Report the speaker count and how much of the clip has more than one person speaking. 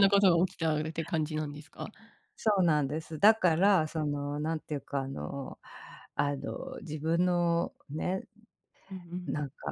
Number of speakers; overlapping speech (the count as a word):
two, about 2%